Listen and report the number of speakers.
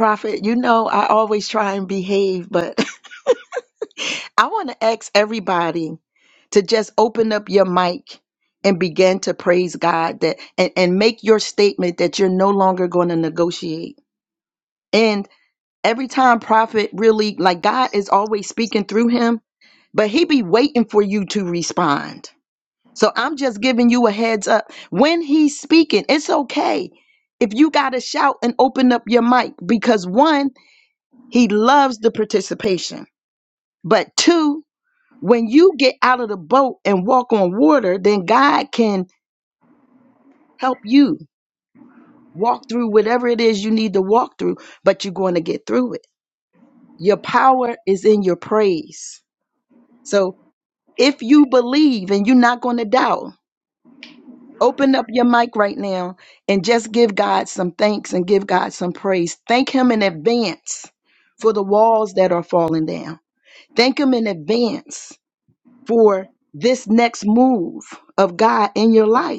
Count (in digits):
1